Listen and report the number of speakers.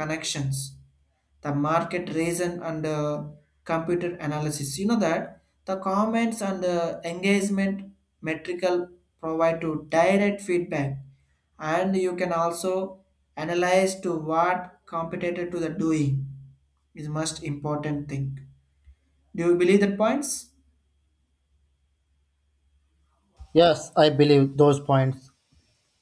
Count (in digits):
2